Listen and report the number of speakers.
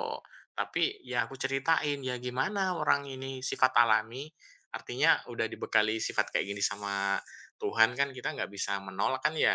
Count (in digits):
1